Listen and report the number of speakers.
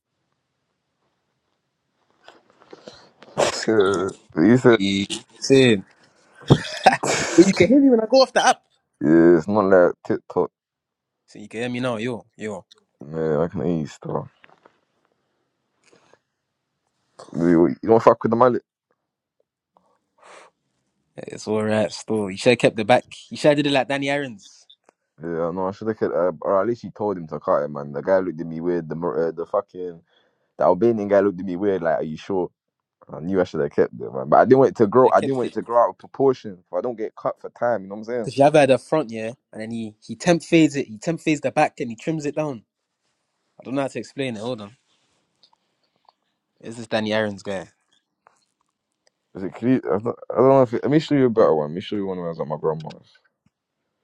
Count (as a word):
two